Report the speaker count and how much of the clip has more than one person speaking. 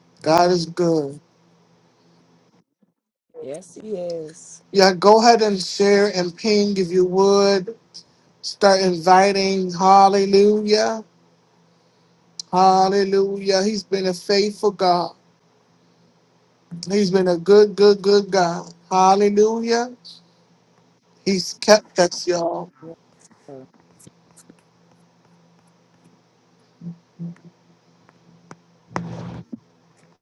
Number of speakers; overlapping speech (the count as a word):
two, no overlap